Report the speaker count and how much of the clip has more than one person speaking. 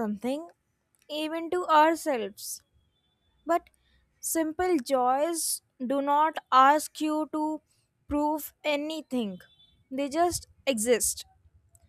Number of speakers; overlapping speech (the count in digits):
1, no overlap